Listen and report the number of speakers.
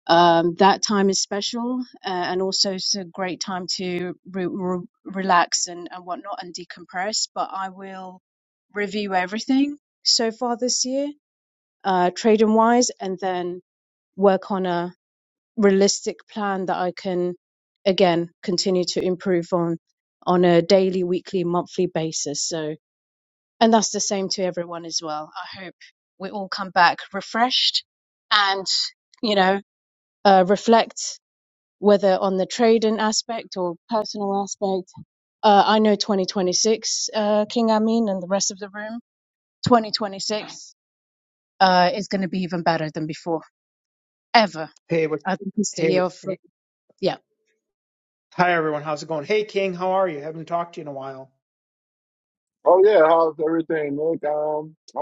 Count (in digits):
3